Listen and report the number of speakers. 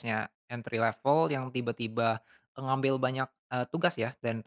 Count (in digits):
1